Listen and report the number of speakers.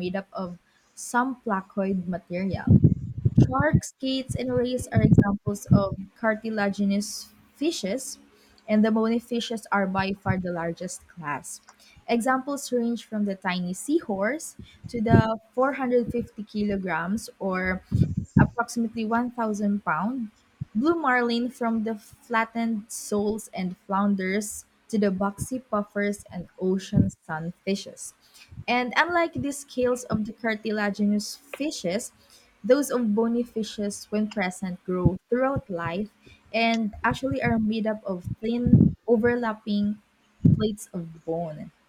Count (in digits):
1